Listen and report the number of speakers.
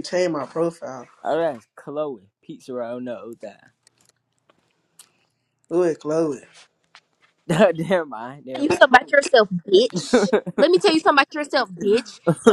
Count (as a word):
three